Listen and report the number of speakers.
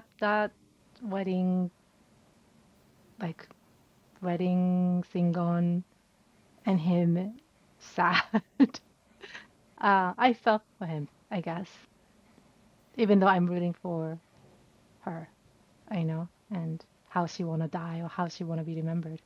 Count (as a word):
one